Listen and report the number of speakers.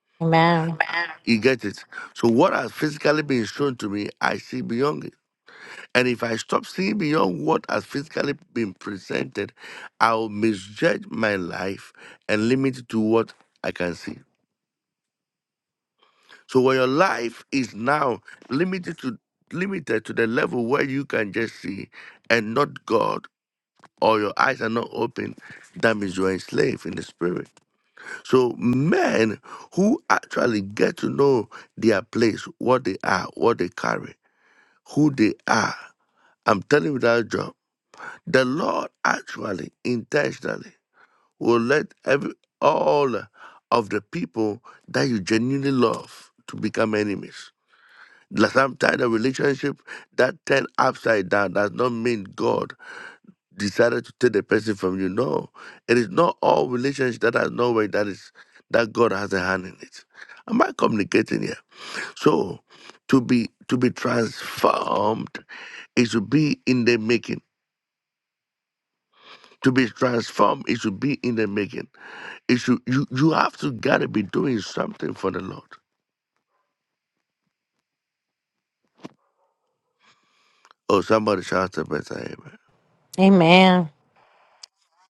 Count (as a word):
two